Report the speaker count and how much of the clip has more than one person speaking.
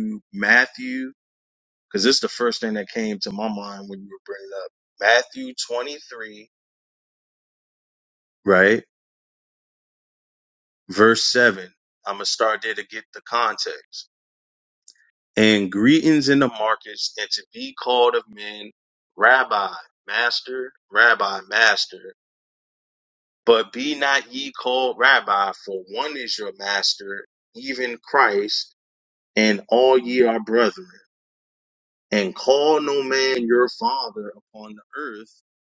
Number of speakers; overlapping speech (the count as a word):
one, no overlap